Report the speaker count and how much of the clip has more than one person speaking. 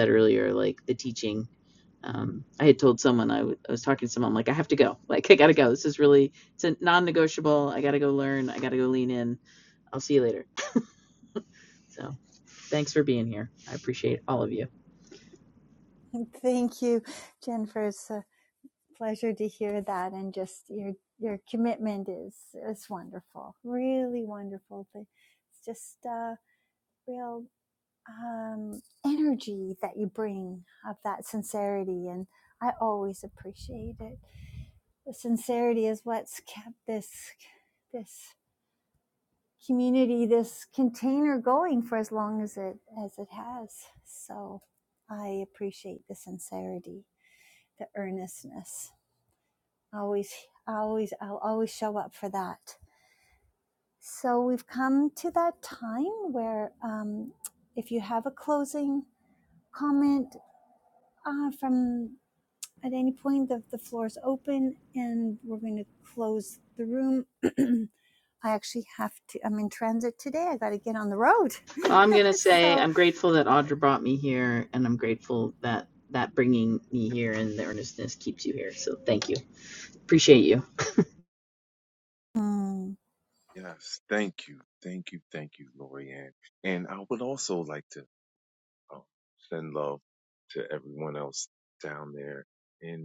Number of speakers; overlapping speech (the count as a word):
three, under 1%